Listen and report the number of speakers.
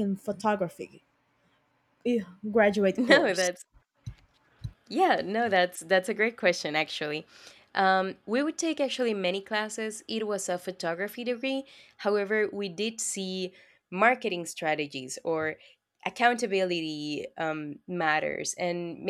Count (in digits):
2